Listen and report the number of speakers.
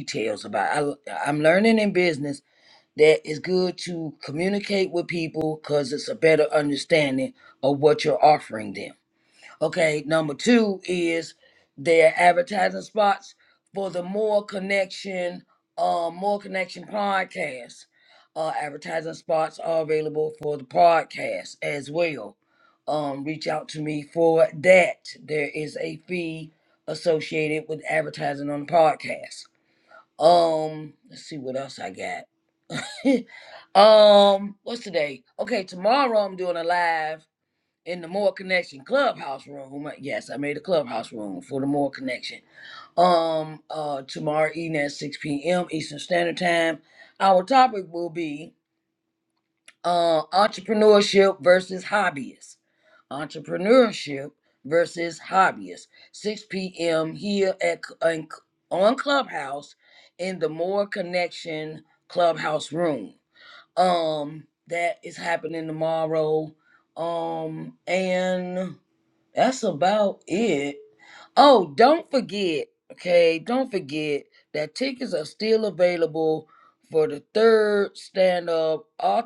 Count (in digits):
1